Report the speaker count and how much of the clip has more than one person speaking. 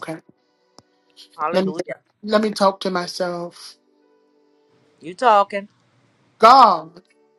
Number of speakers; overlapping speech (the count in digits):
2, about 3%